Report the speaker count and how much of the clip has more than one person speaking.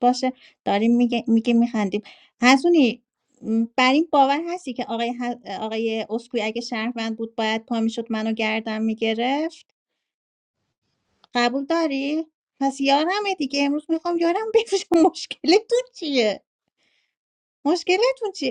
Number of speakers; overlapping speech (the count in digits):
1, no overlap